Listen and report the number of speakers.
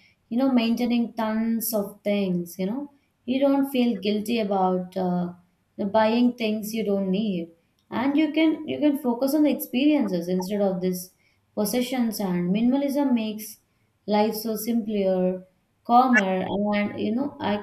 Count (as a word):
one